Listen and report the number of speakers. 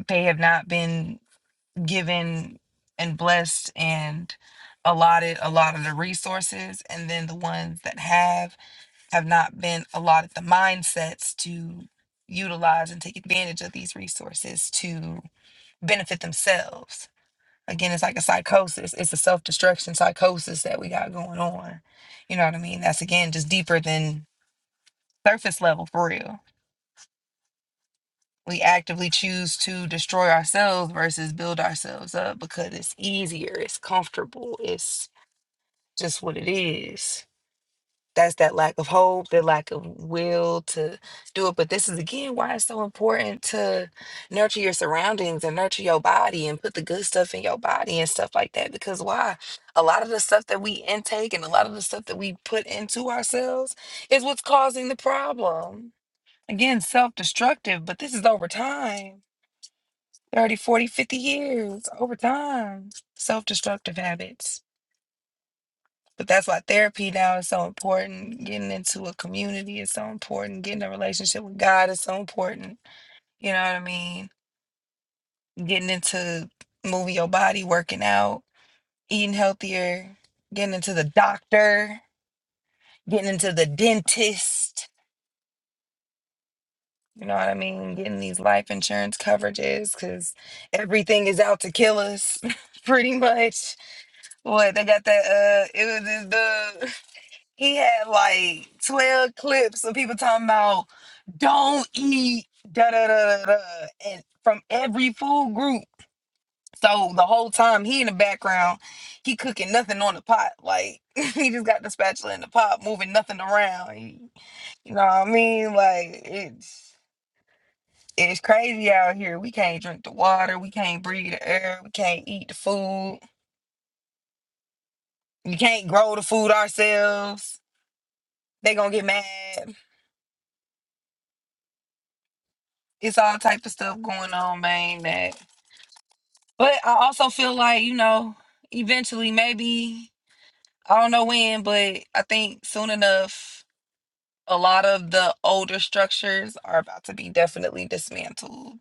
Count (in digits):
1